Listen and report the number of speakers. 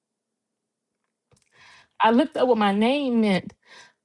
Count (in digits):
1